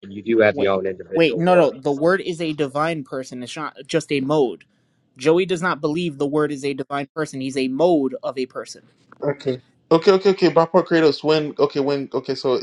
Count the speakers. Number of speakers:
three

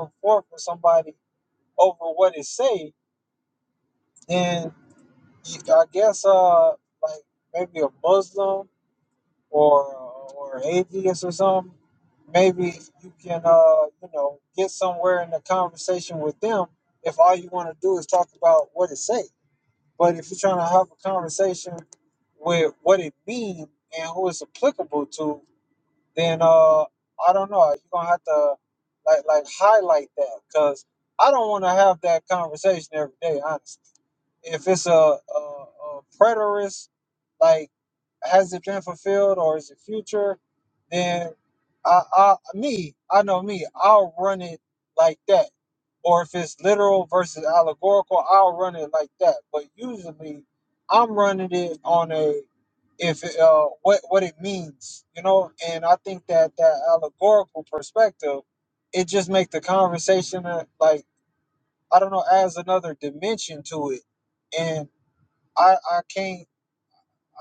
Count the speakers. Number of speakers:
one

